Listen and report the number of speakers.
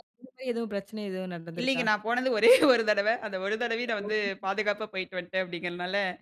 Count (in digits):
2